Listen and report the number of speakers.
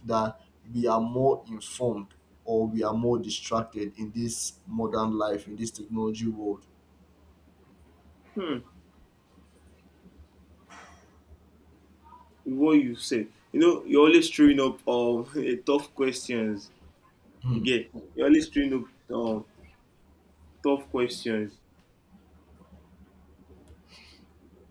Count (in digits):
2